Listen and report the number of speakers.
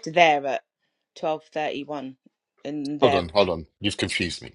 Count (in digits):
2